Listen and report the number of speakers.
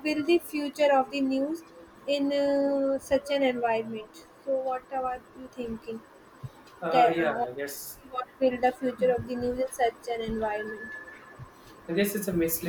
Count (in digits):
2